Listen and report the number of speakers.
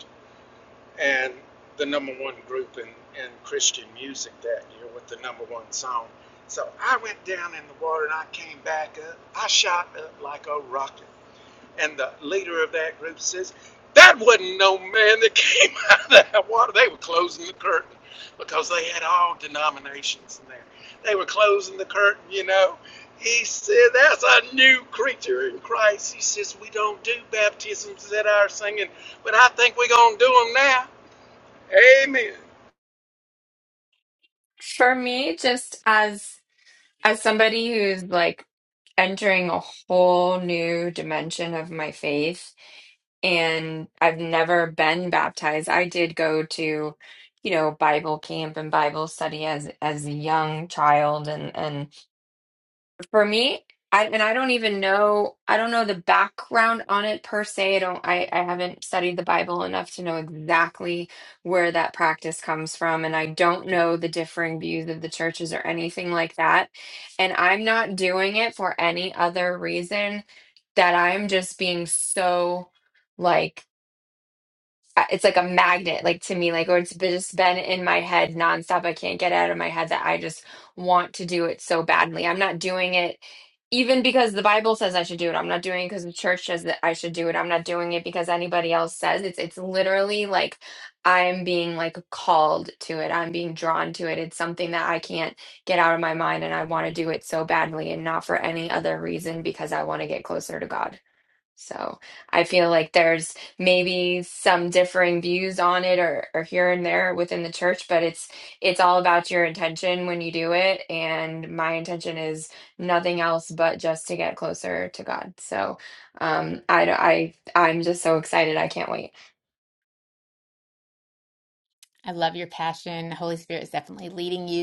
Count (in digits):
3